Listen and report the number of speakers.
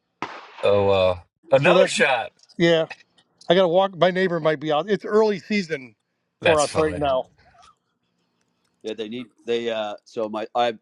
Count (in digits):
3